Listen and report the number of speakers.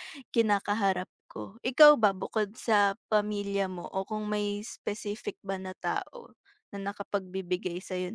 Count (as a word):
one